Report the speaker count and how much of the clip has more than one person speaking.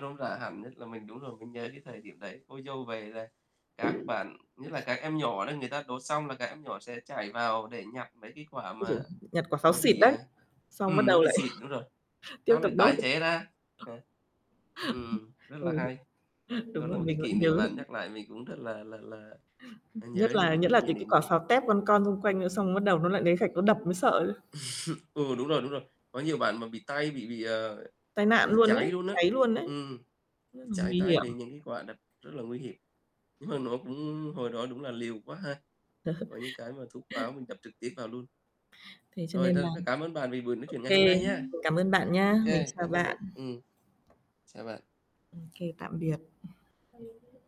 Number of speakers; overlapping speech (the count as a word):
two, about 15%